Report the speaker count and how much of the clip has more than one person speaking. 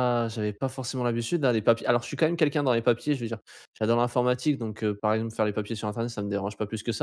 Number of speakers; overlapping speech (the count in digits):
1, no overlap